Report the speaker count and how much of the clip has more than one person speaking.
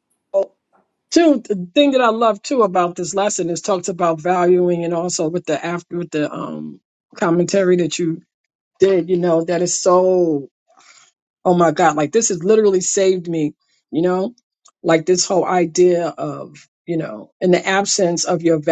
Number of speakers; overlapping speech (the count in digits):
1, no overlap